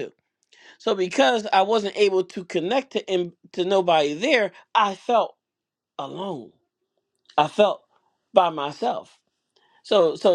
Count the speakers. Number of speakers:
1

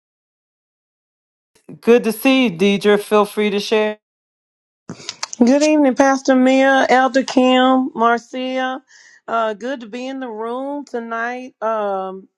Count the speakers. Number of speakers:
2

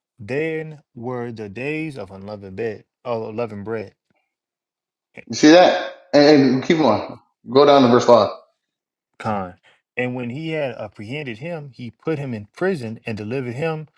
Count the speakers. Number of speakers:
2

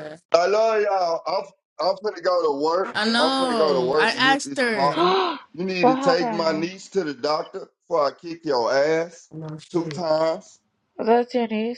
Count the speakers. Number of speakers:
3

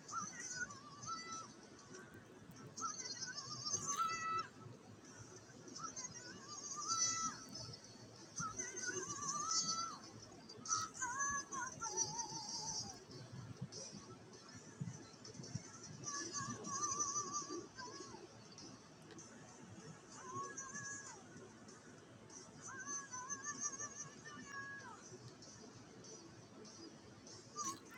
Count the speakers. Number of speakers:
0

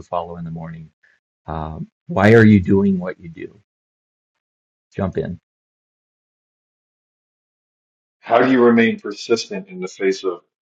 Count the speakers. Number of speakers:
2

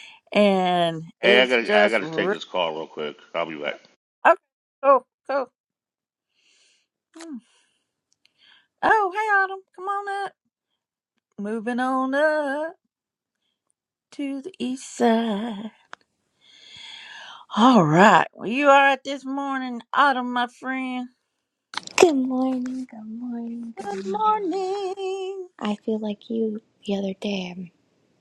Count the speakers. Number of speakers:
3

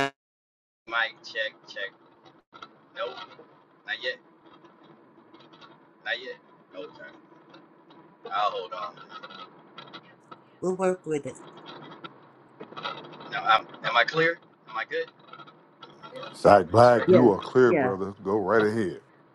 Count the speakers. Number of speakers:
3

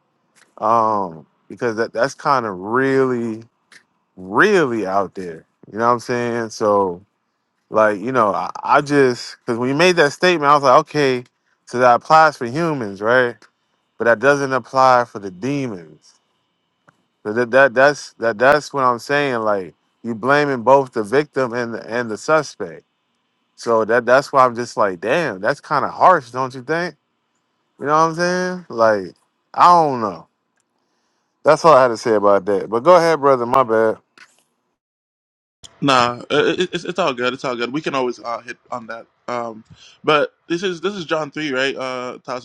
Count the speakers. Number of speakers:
2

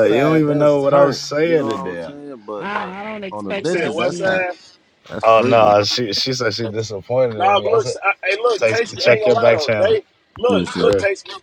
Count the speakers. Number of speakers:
4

